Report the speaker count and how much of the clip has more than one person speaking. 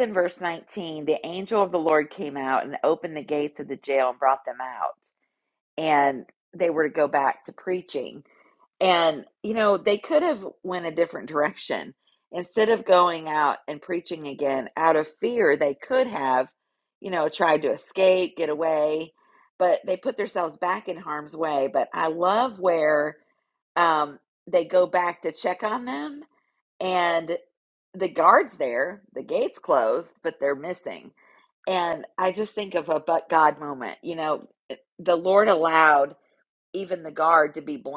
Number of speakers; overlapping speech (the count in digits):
1, no overlap